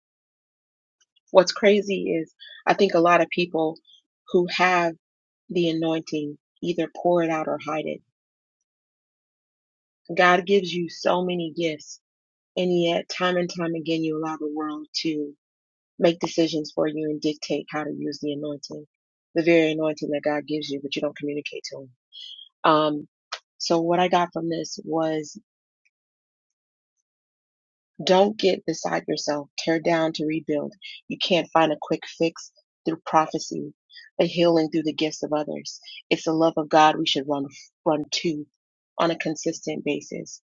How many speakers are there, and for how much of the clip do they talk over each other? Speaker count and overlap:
one, no overlap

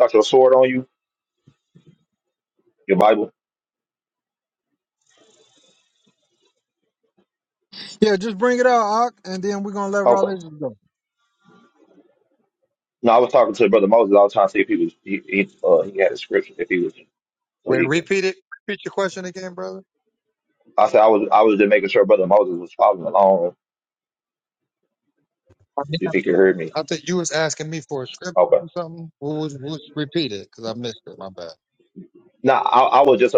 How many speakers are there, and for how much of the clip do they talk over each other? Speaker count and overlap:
three, about 3%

